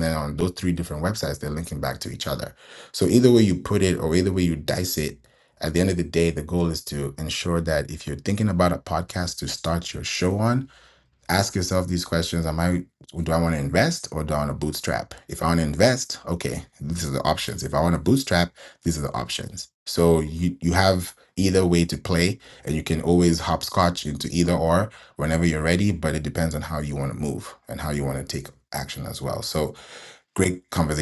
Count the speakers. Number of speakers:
one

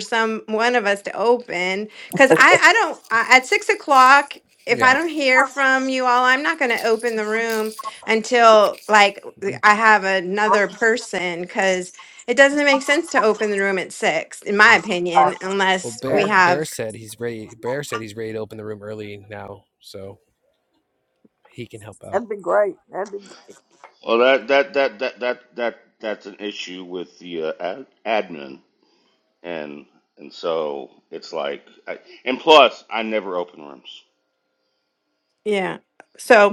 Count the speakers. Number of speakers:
four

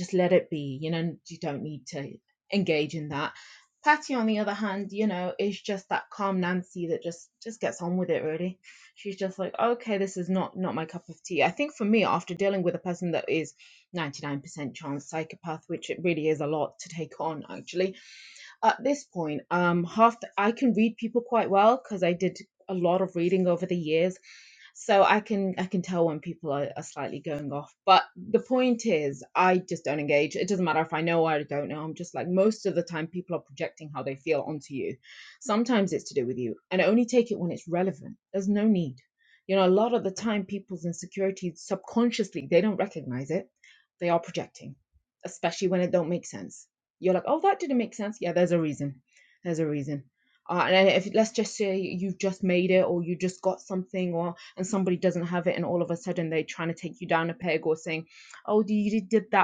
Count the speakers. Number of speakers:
one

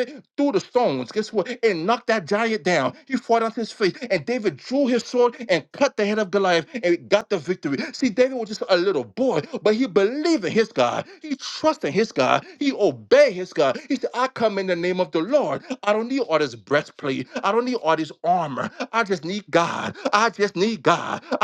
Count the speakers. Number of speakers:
one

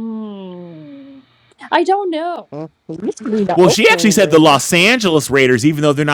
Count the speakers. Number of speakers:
three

